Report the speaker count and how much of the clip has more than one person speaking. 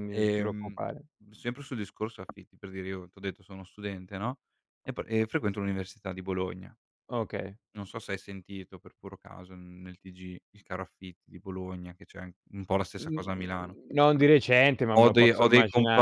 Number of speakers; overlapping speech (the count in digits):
2, about 12%